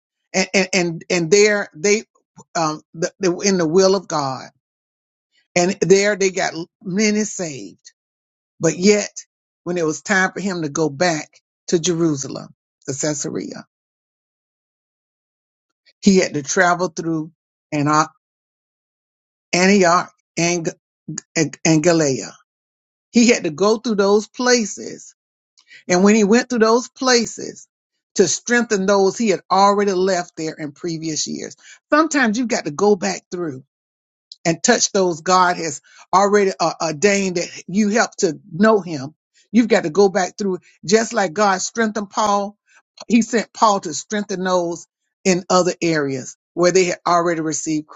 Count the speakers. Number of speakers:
one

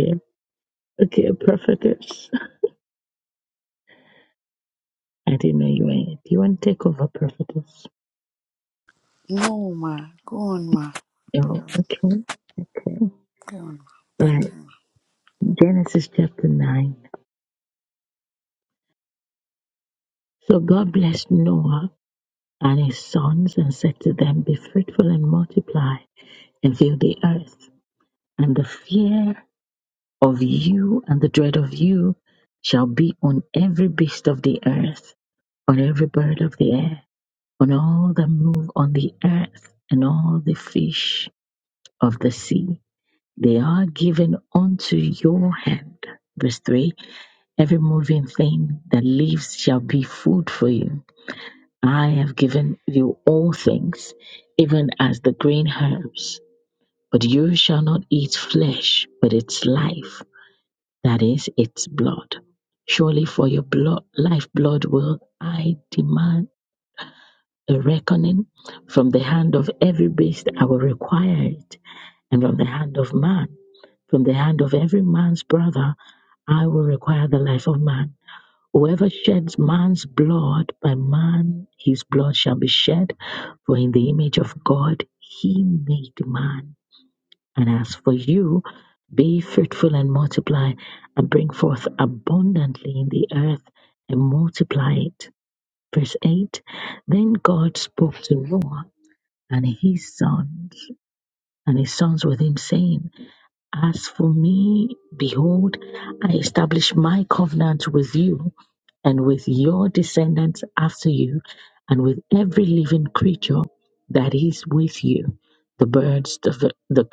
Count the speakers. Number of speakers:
two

